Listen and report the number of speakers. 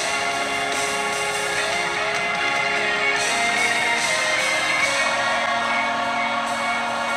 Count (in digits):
0